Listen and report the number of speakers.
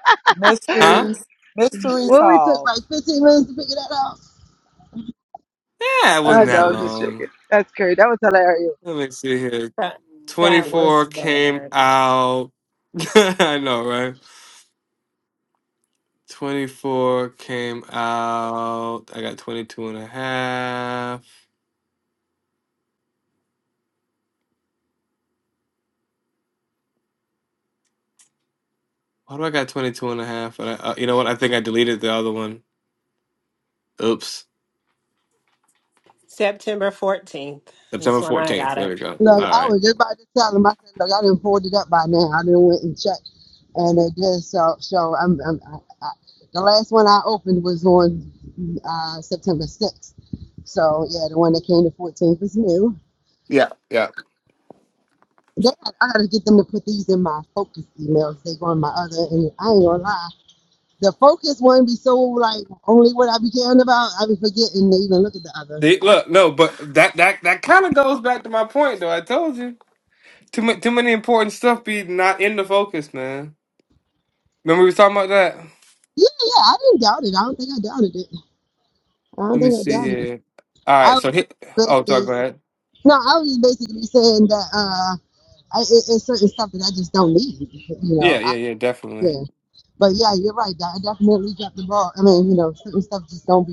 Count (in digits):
4